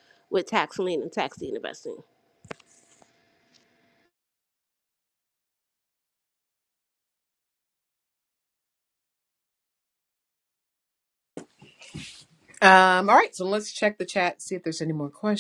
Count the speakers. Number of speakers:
two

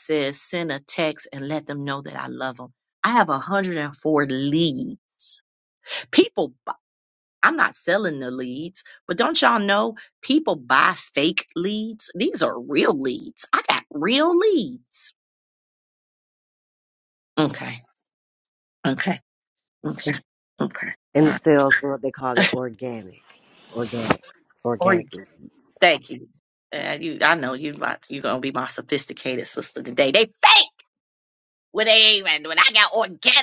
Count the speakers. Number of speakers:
two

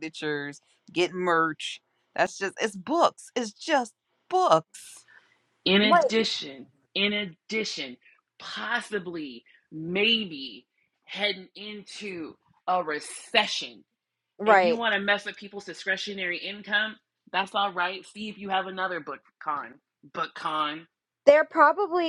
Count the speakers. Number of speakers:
three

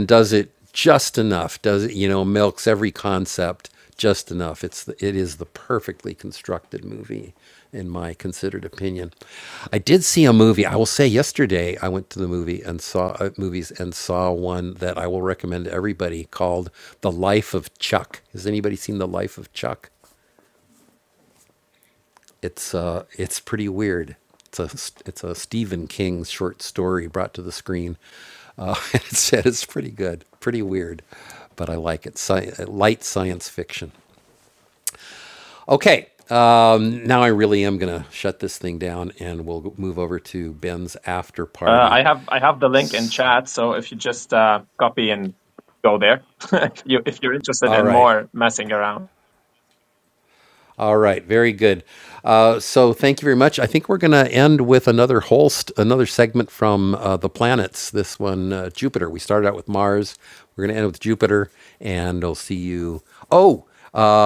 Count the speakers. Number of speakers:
two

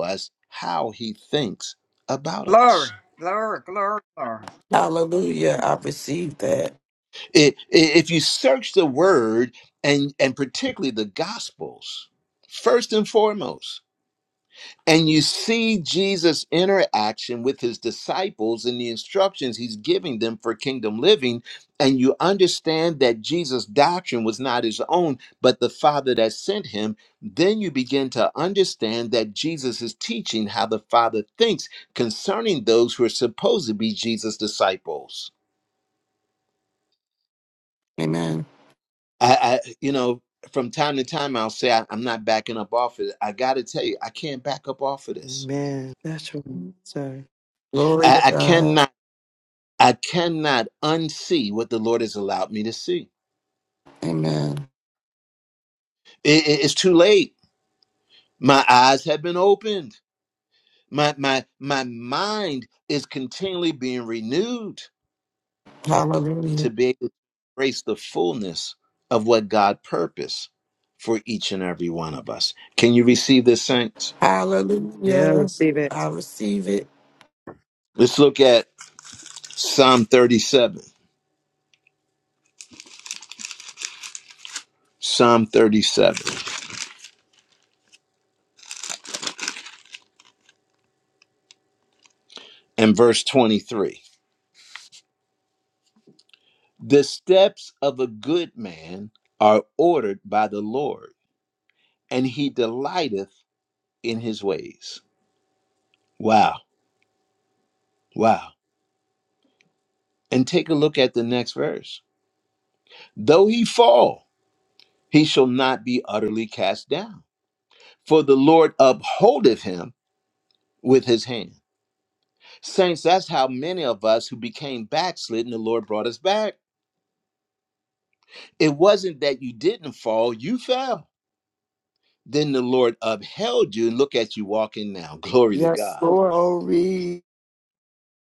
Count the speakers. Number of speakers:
five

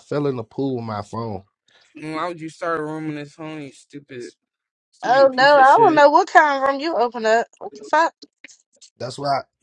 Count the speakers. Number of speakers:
three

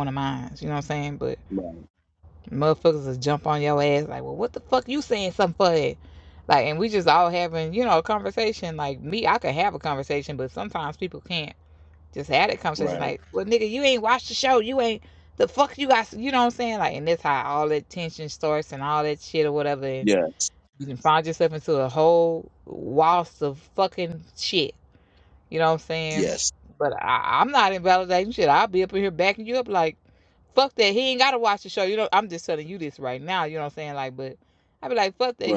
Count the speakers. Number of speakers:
two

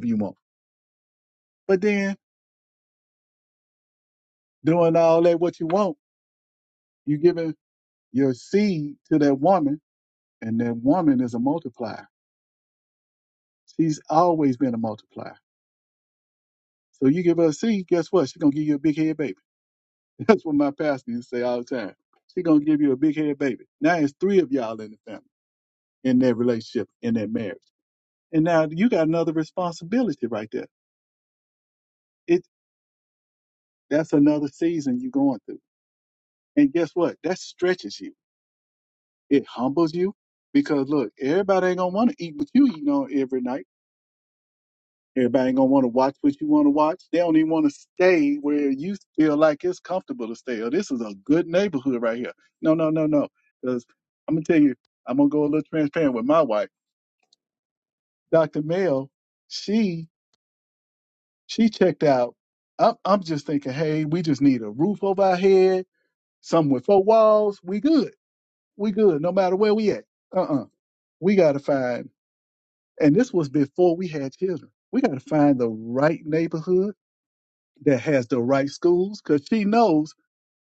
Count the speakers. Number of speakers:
one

